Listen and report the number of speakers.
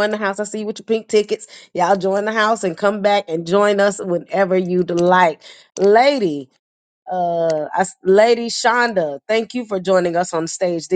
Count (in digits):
1